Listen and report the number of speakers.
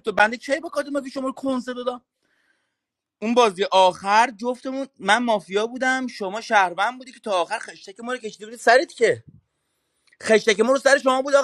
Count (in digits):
1